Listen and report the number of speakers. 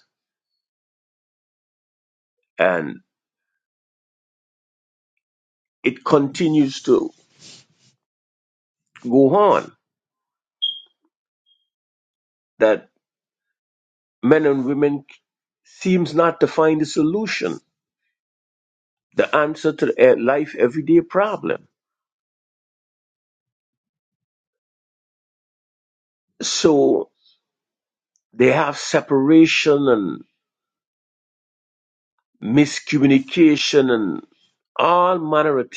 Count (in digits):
1